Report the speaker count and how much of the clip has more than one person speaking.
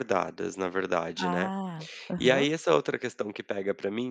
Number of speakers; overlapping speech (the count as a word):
two, about 15%